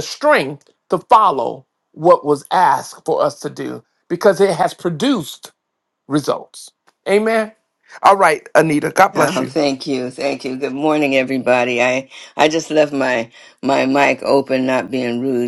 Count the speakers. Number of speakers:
two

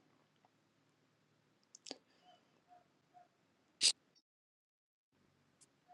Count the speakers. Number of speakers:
zero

